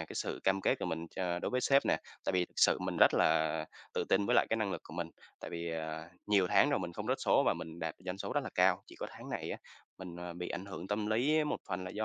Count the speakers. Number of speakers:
1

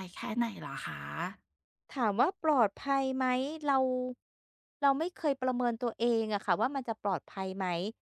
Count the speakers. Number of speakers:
2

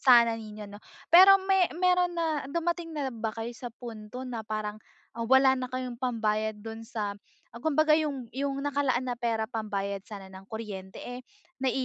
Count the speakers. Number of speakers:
1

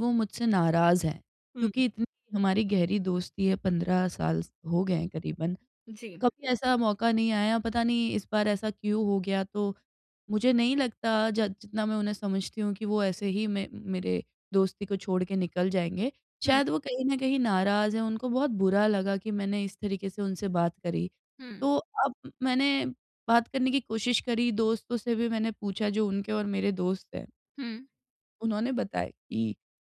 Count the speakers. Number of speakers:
2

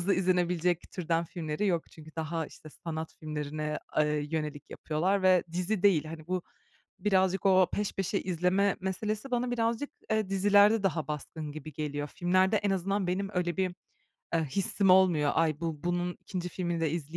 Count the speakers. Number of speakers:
1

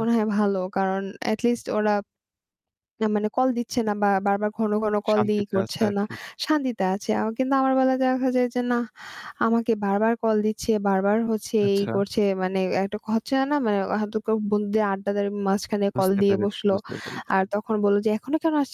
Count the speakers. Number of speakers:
2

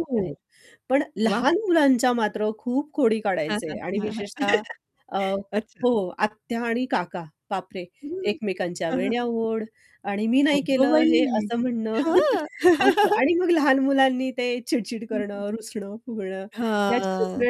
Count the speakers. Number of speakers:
2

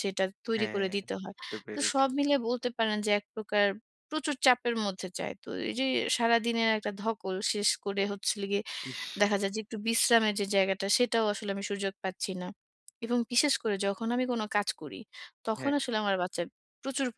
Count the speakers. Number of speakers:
2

